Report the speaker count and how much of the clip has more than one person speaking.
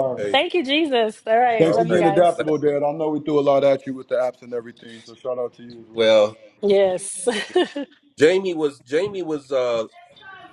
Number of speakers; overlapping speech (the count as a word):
three, about 13%